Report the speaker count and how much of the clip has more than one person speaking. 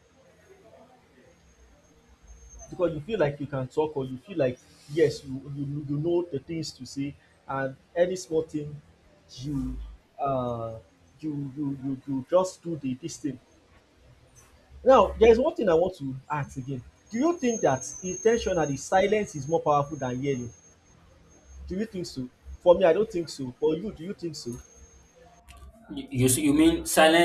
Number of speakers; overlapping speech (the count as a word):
two, no overlap